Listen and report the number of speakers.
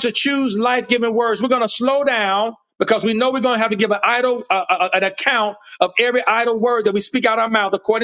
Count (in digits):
1